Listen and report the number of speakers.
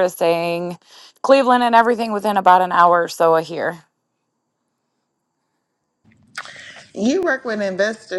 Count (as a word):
two